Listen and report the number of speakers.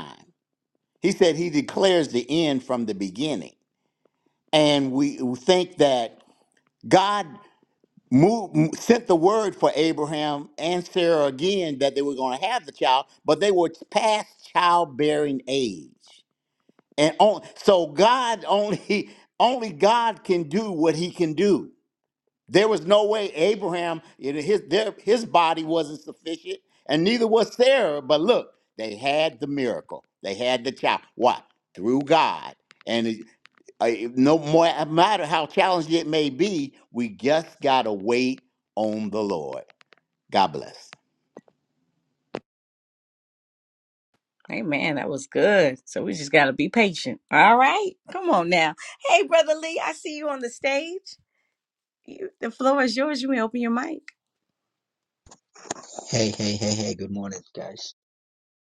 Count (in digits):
3